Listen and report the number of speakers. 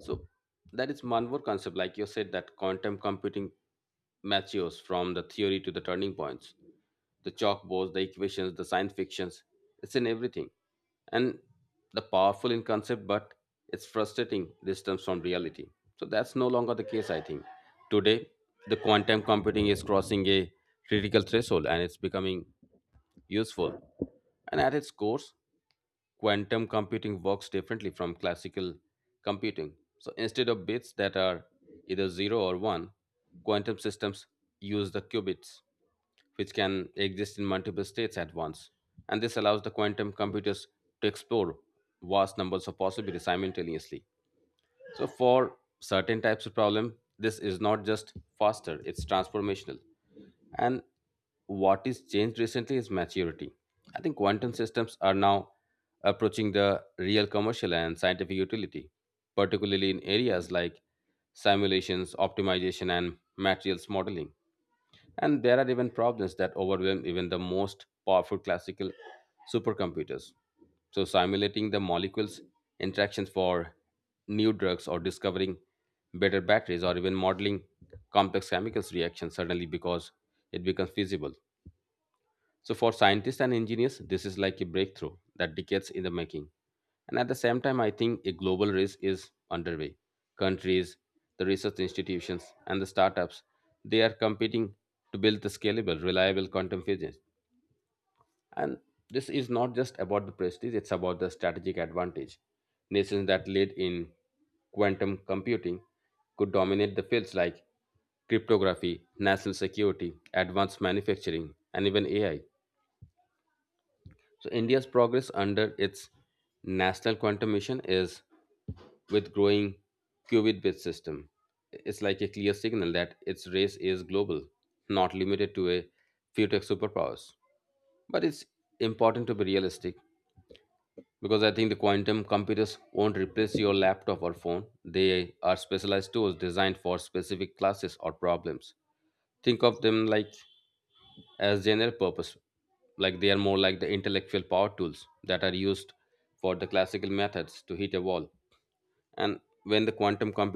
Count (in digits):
1